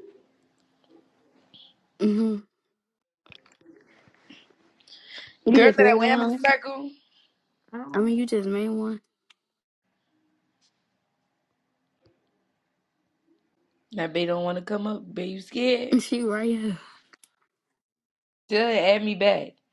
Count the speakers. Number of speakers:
2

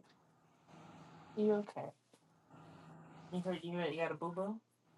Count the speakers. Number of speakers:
1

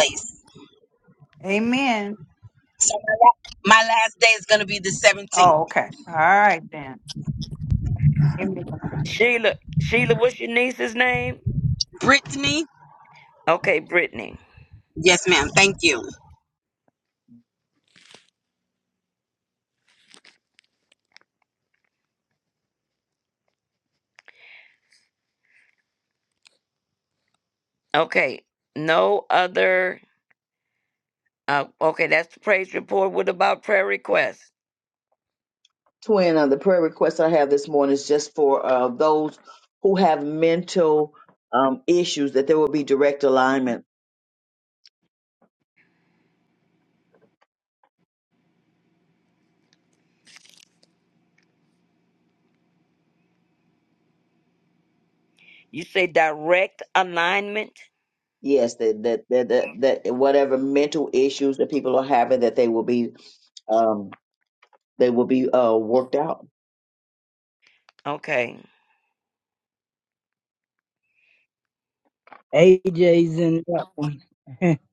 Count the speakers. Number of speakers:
5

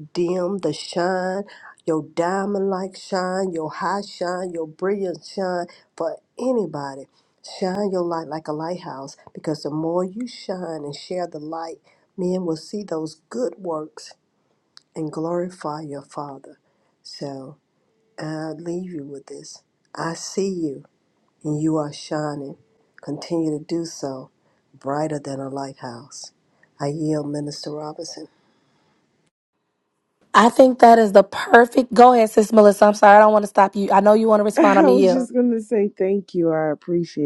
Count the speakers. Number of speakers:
3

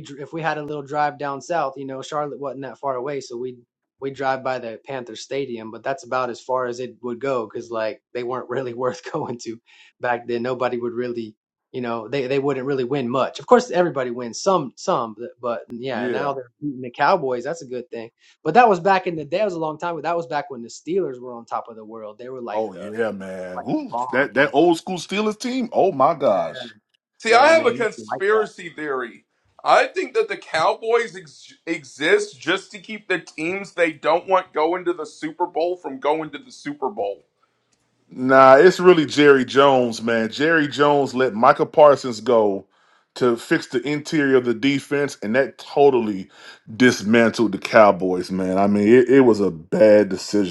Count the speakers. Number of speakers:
3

